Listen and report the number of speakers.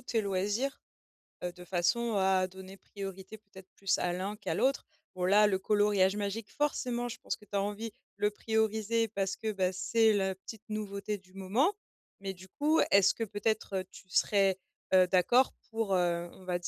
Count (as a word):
one